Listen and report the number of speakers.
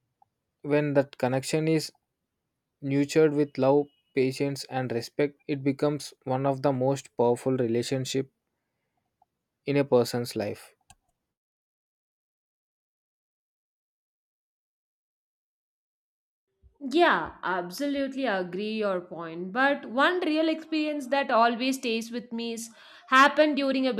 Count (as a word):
two